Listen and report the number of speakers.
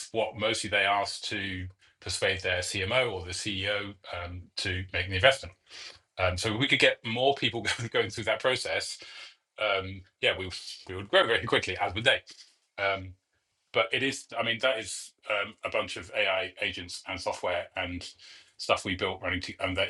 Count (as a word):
one